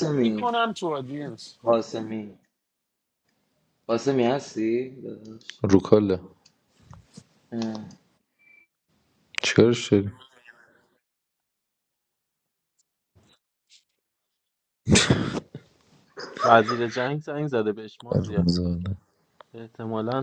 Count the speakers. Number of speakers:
4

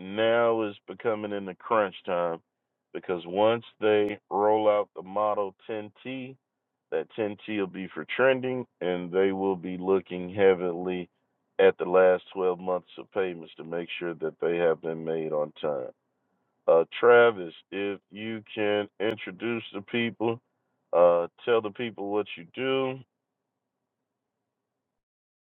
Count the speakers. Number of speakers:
1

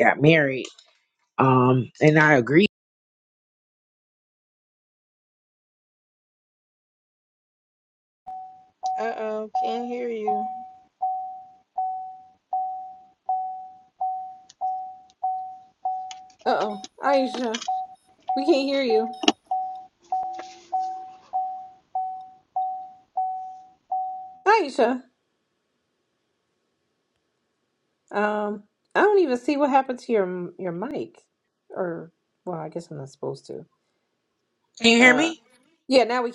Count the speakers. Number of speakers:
3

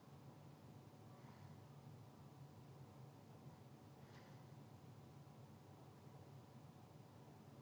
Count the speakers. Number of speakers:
0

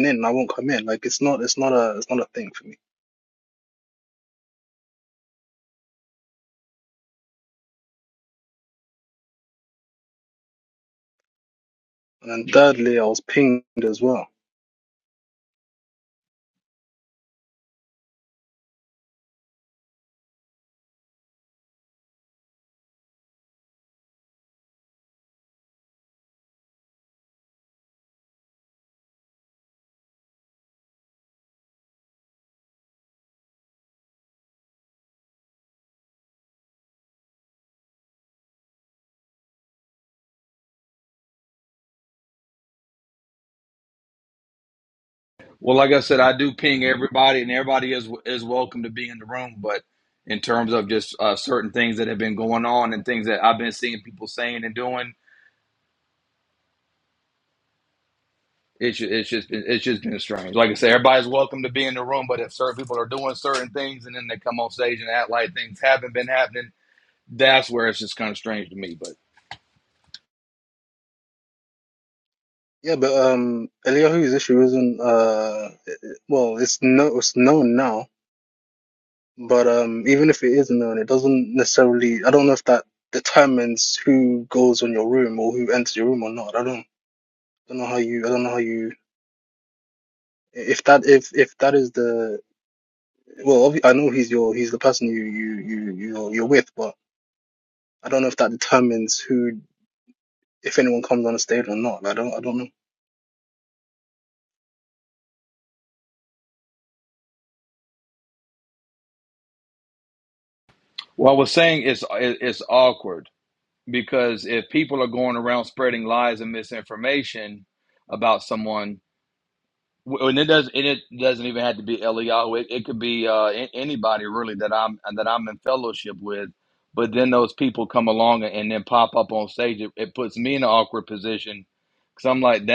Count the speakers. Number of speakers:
2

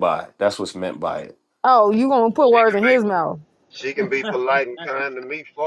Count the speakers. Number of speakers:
3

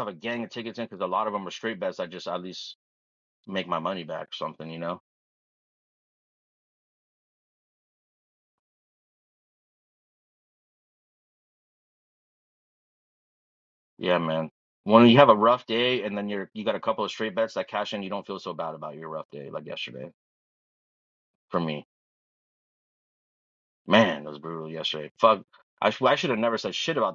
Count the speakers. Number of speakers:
1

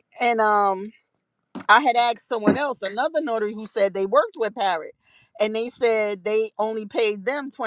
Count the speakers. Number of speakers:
1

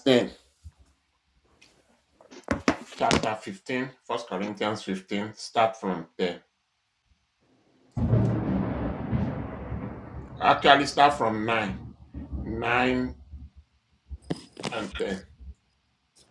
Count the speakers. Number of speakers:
1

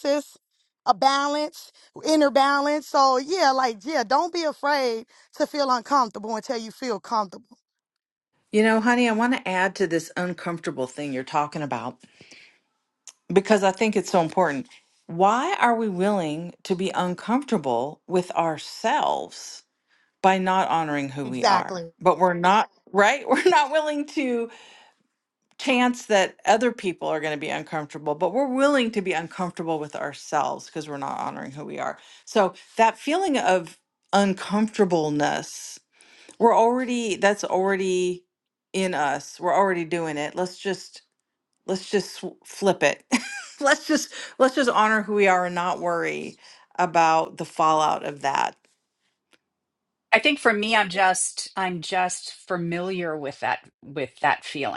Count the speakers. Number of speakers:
3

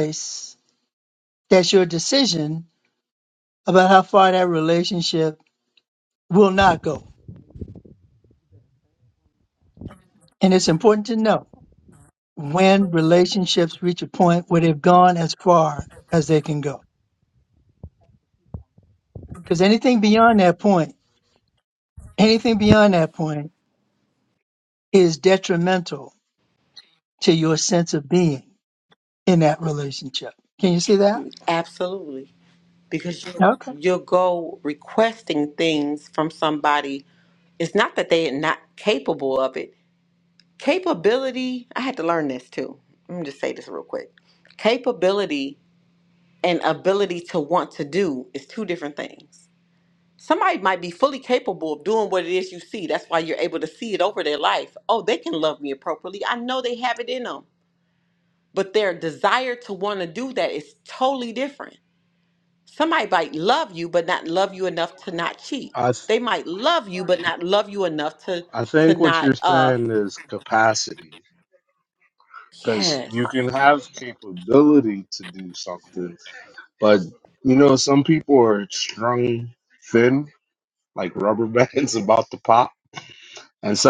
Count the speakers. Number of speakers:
3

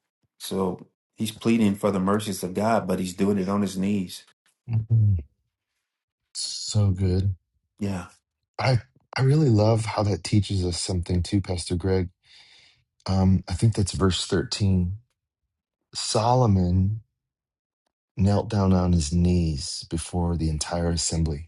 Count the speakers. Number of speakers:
2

